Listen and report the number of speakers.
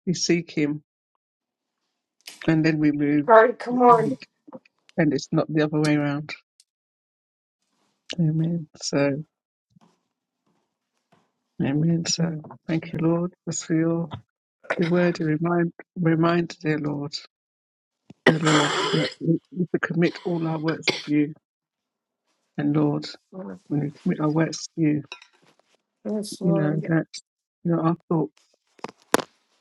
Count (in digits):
2